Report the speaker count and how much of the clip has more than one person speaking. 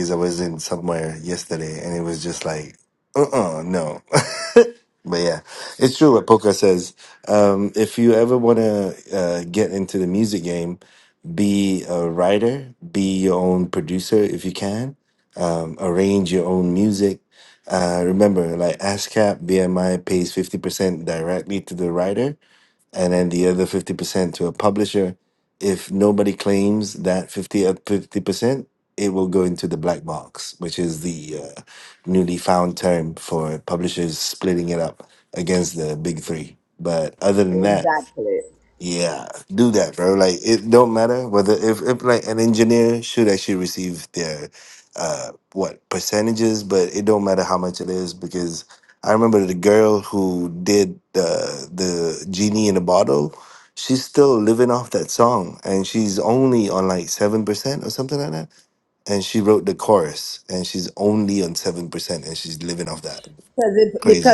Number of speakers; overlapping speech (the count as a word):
two, about 1%